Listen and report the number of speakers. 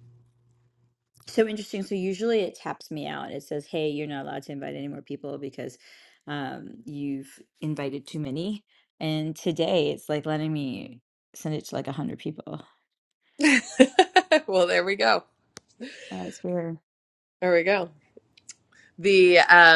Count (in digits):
2